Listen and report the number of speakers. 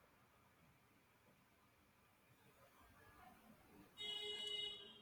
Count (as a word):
zero